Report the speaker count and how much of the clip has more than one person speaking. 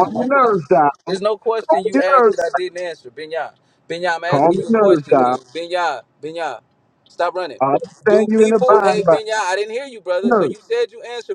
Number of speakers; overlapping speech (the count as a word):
two, about 34%